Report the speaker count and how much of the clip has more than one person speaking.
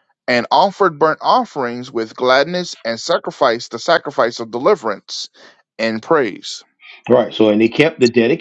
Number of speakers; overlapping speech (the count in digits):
2, no overlap